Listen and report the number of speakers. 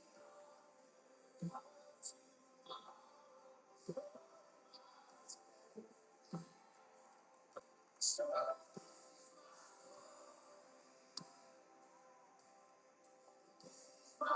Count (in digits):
0